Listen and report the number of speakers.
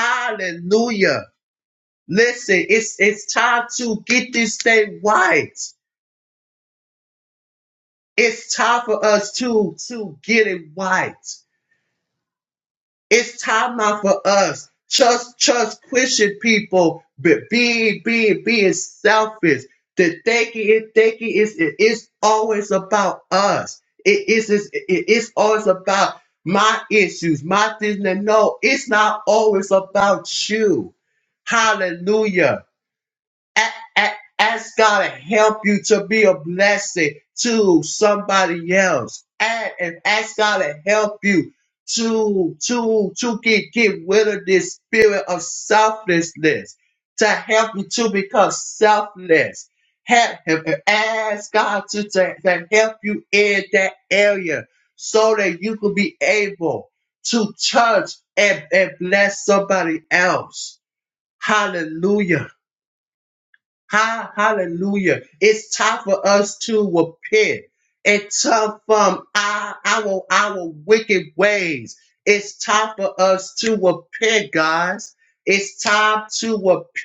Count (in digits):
1